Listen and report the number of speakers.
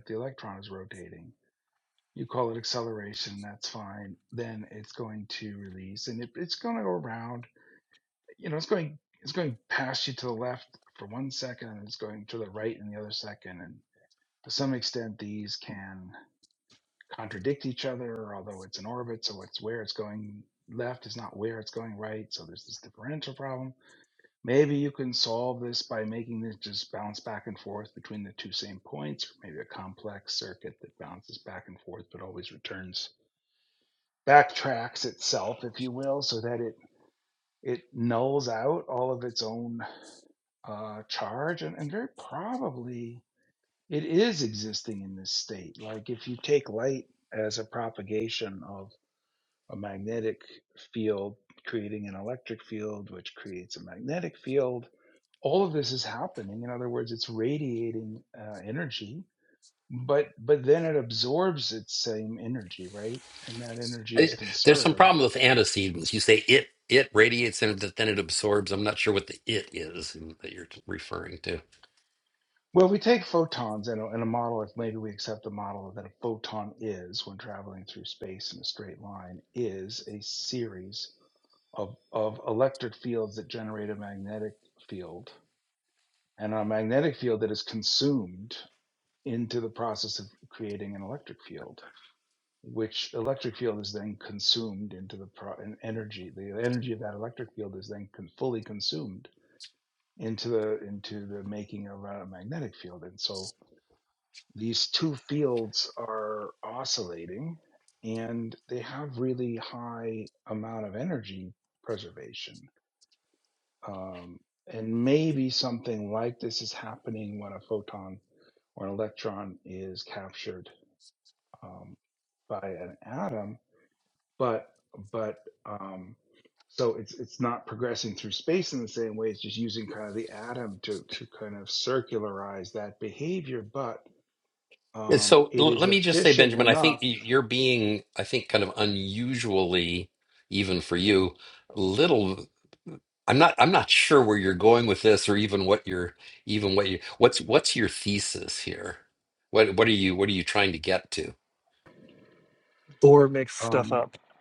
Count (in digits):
3